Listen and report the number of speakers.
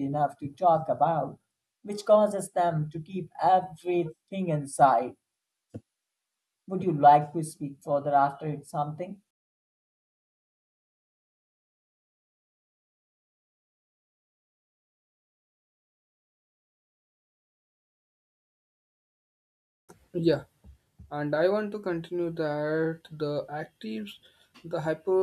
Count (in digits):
2